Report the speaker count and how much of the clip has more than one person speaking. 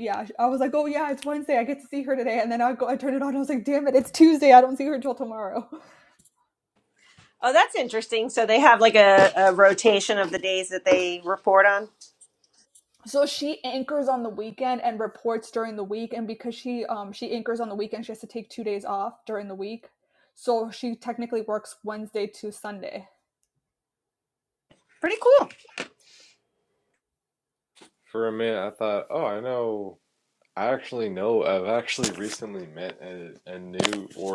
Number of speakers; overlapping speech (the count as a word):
three, no overlap